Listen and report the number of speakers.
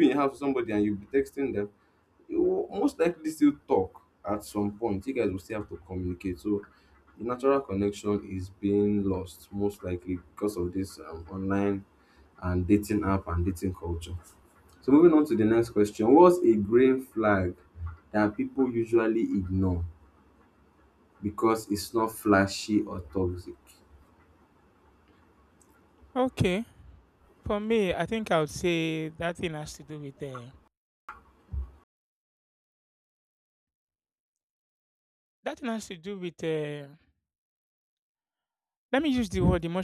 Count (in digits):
2